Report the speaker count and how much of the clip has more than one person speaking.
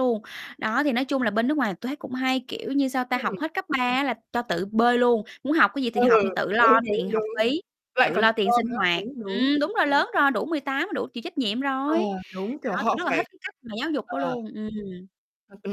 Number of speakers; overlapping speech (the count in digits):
2, about 25%